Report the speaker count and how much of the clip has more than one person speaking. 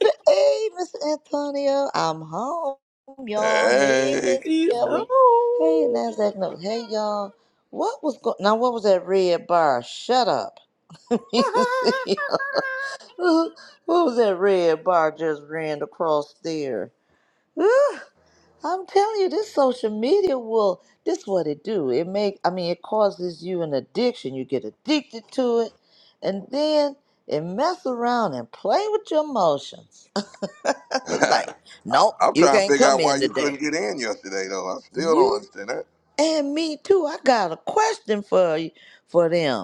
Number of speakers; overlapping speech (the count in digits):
3, about 9%